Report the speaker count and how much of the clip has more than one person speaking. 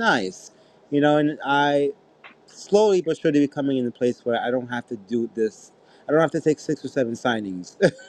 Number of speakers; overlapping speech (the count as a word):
one, no overlap